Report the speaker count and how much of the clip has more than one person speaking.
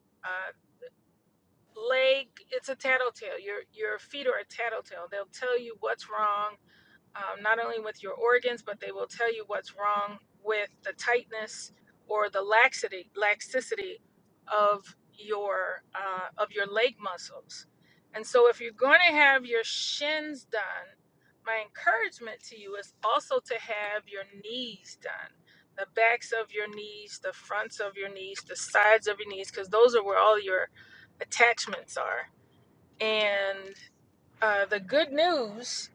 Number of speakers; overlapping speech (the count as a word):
one, no overlap